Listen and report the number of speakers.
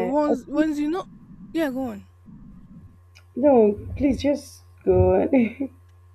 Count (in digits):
2